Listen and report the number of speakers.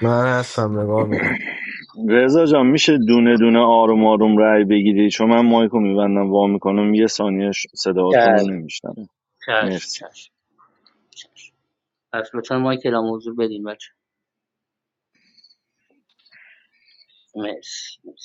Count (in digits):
3